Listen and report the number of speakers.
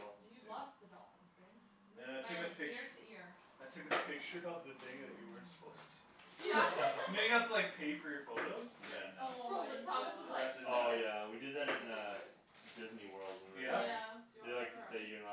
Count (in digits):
4